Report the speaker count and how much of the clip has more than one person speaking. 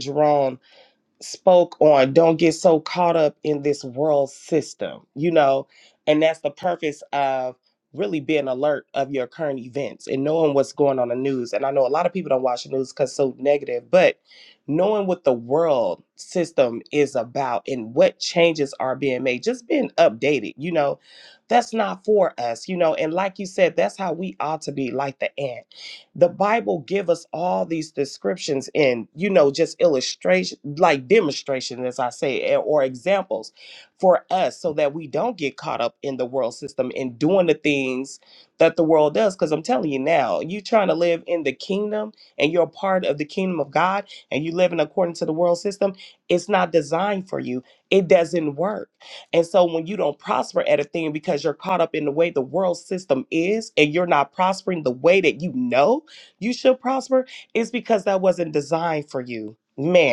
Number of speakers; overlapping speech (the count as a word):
one, no overlap